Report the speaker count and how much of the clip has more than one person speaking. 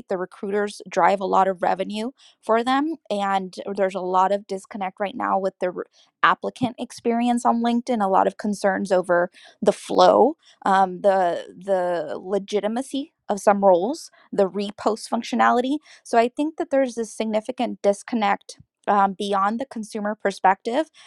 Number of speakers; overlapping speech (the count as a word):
one, no overlap